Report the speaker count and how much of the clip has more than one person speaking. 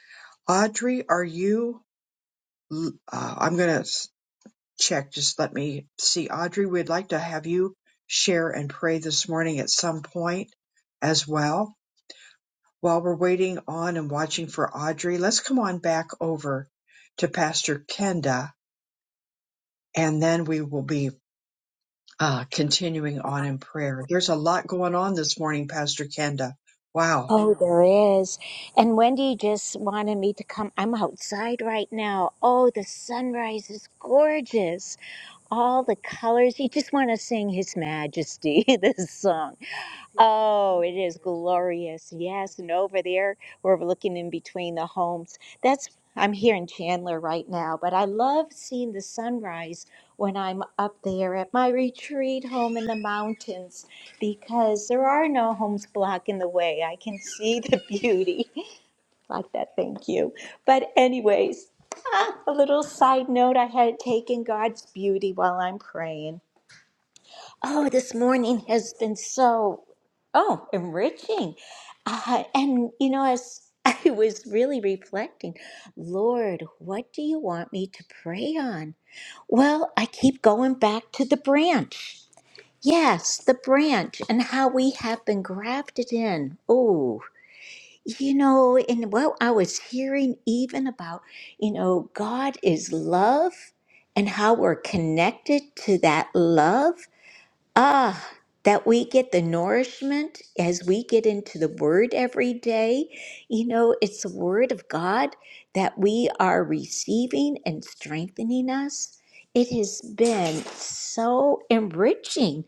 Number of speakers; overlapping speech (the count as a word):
two, under 1%